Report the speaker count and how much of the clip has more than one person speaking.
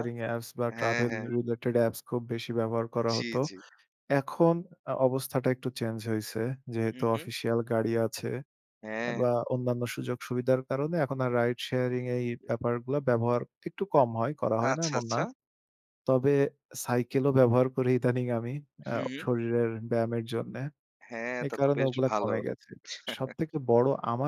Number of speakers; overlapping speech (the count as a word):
two, about 14%